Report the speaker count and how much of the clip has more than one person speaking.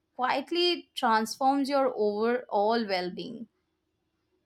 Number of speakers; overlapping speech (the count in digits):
1, no overlap